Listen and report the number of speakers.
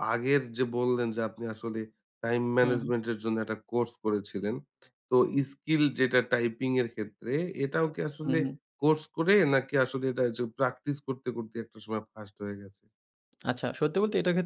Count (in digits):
2